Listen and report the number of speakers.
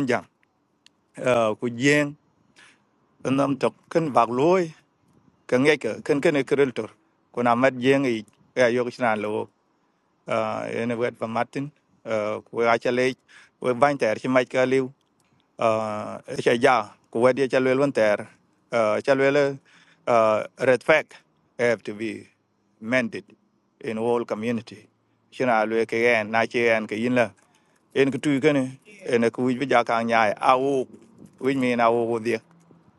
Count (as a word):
one